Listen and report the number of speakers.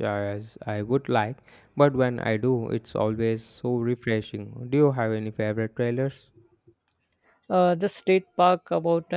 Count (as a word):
two